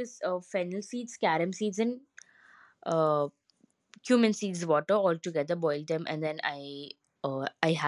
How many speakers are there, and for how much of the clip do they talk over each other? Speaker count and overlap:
one, no overlap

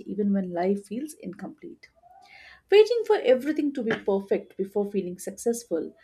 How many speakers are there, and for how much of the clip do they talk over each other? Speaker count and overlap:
one, no overlap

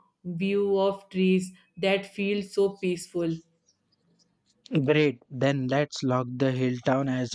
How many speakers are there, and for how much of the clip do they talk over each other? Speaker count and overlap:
two, no overlap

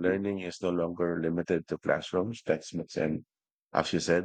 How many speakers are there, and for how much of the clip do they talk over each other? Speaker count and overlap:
one, no overlap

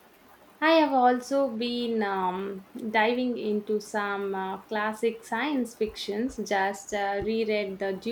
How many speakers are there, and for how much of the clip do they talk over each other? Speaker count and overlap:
one, no overlap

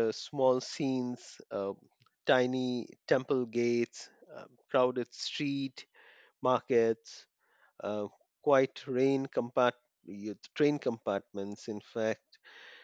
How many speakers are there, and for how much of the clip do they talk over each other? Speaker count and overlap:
one, no overlap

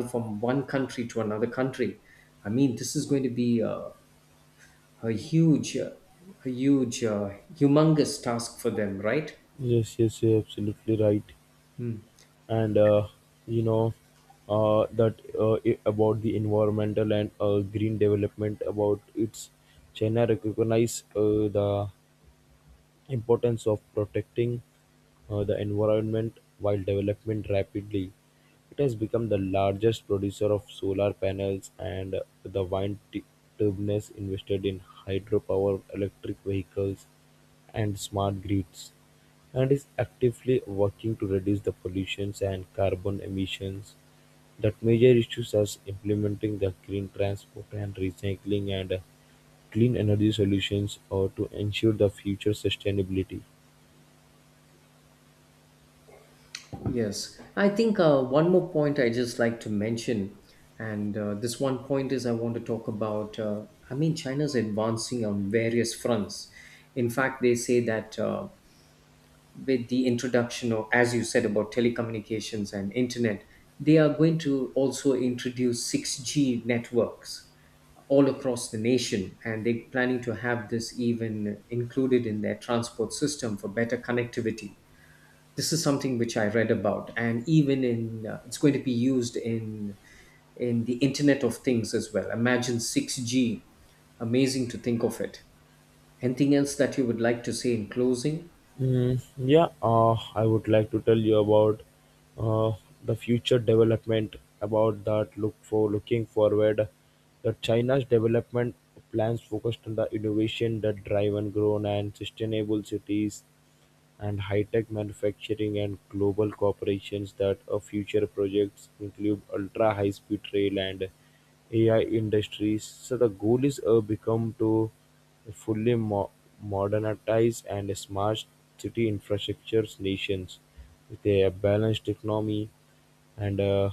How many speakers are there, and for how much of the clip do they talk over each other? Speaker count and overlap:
two, no overlap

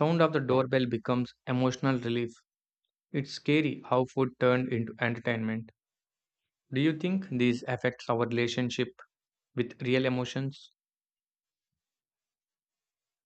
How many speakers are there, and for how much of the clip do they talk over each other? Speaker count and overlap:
one, no overlap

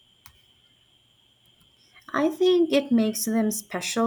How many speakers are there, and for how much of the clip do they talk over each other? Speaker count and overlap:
one, no overlap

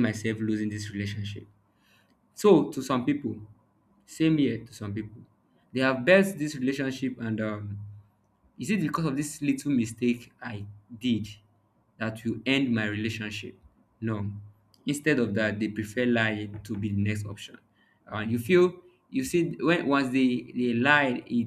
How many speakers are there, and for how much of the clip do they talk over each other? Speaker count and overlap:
one, no overlap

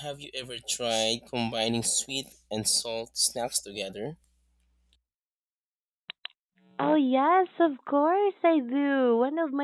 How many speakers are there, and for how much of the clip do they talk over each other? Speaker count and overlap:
two, no overlap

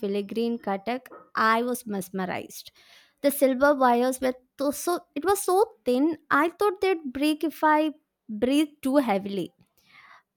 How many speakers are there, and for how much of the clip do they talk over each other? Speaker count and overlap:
one, no overlap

